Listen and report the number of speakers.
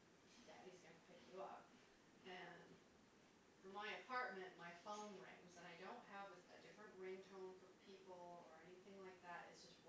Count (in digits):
1